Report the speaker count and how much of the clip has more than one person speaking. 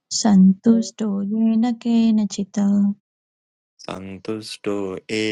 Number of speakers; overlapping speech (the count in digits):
2, no overlap